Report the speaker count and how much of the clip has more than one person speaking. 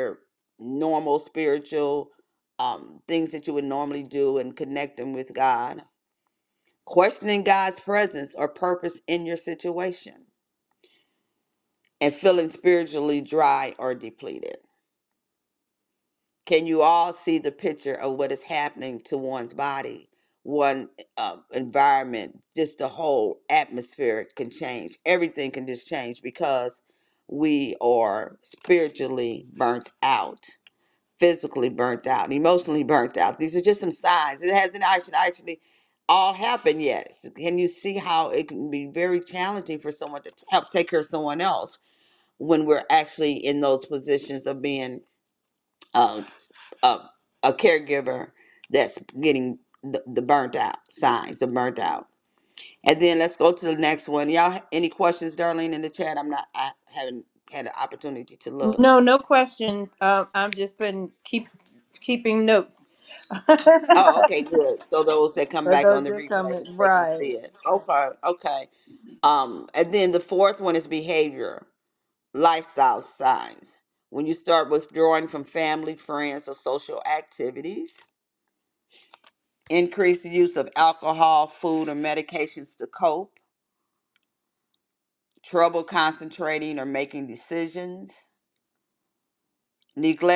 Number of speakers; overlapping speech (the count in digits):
2, about 2%